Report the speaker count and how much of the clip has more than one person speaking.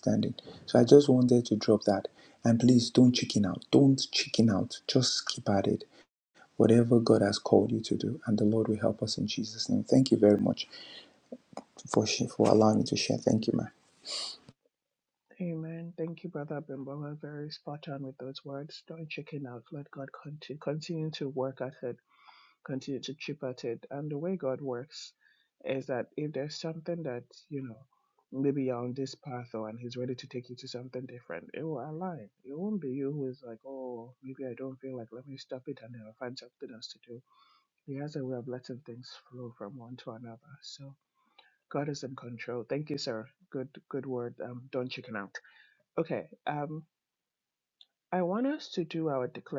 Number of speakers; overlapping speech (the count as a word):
two, no overlap